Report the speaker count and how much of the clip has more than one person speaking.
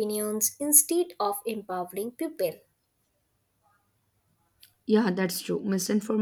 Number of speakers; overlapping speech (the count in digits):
2, no overlap